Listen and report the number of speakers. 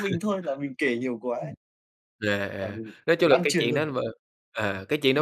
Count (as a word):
two